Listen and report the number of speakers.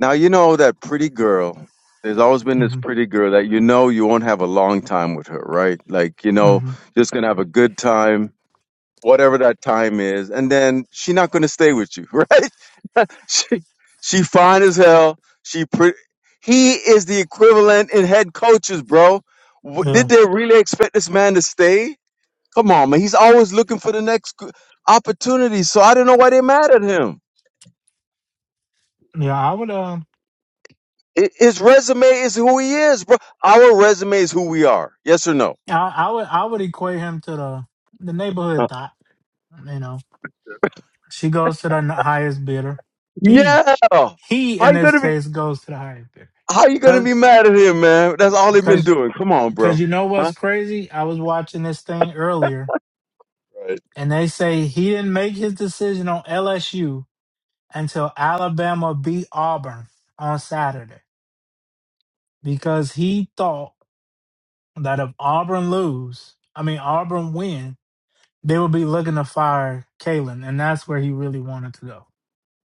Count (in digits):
2